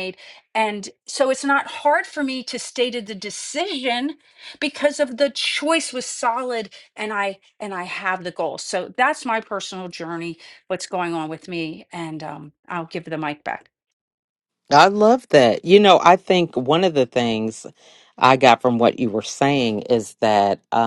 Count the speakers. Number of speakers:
two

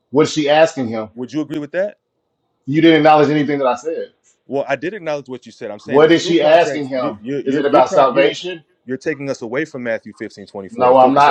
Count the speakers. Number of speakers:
two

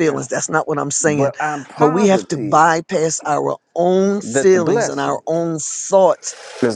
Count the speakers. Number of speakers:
two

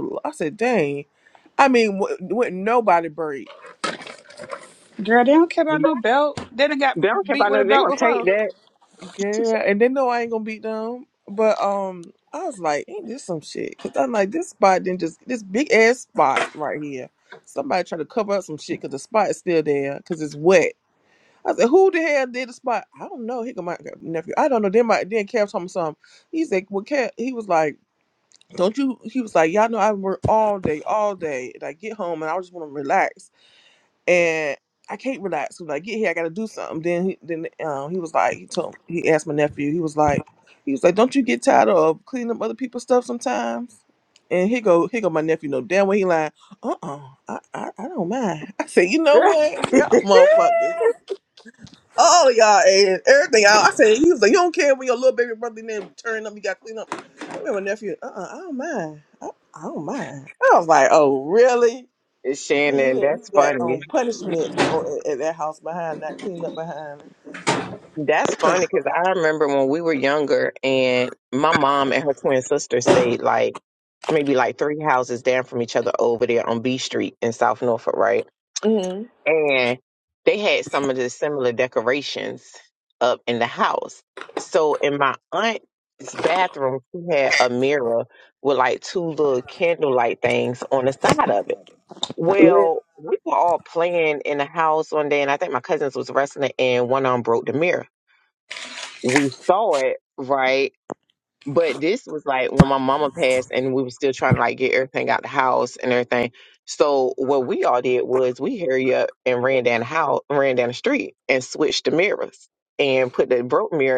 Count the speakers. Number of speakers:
three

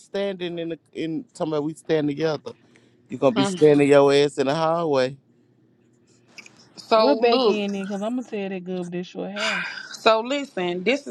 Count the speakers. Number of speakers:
three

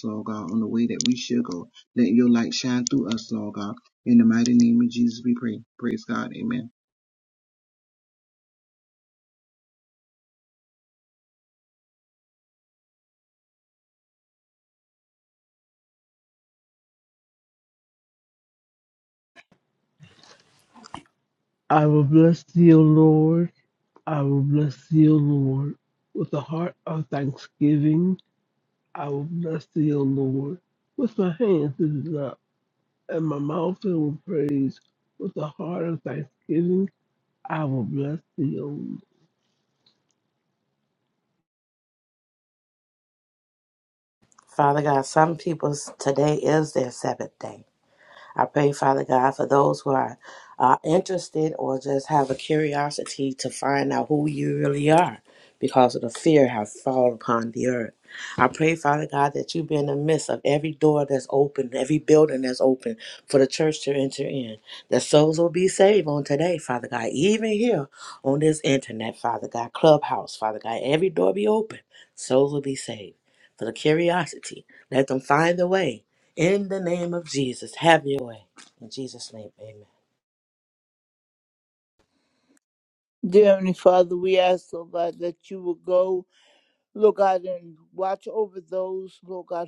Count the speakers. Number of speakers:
four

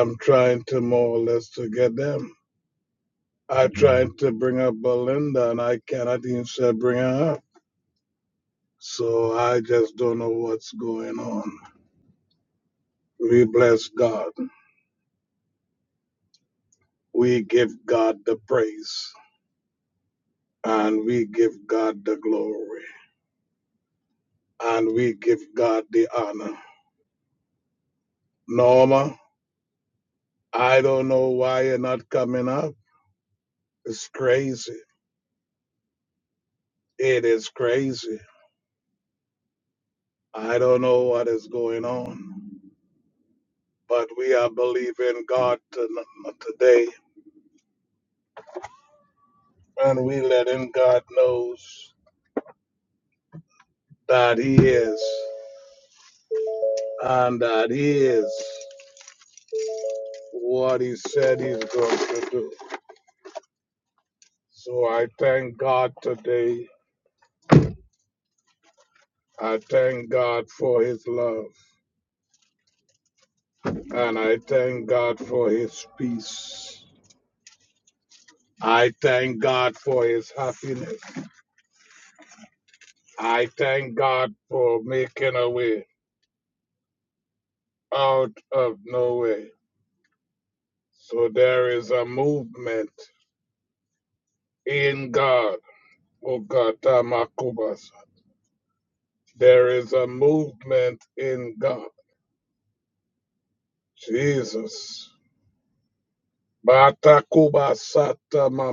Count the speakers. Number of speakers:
one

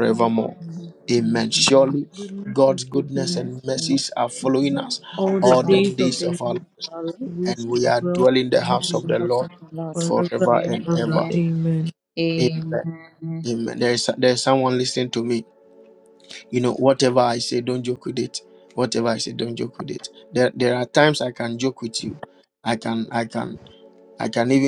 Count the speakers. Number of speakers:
three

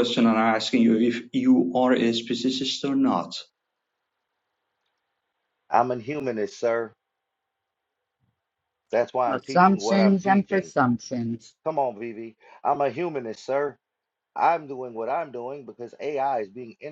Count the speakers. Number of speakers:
three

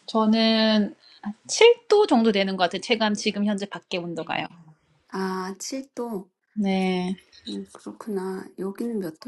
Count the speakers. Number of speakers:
two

